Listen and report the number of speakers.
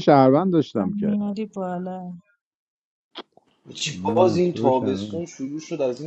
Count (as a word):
three